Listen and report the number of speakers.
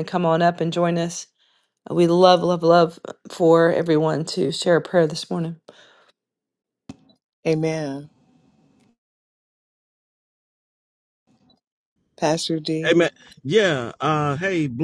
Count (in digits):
3